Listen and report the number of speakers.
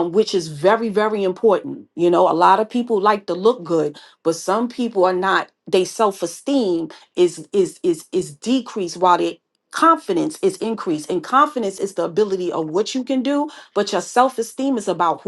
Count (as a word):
one